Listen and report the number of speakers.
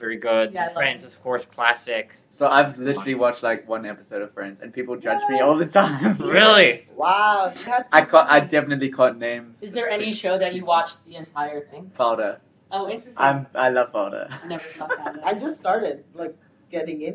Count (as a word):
four